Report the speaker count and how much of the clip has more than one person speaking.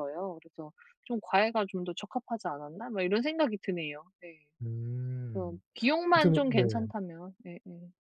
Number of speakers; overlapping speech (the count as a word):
two, about 9%